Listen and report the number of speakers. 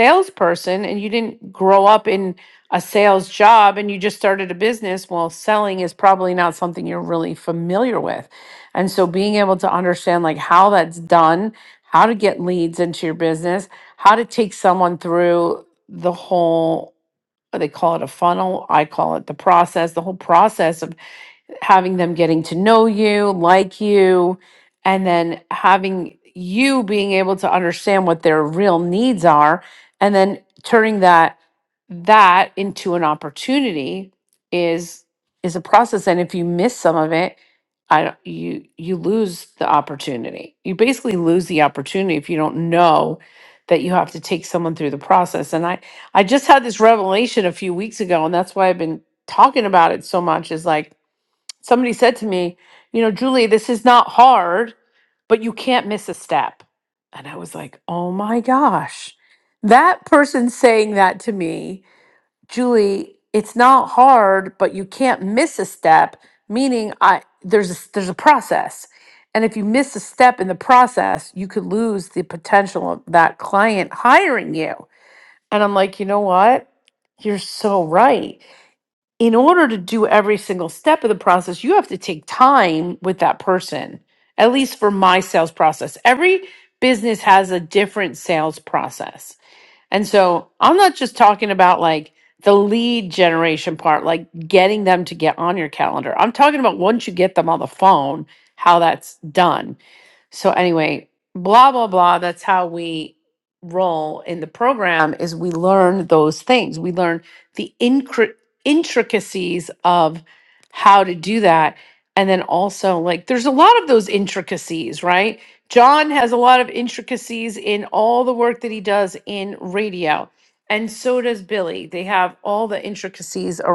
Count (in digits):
1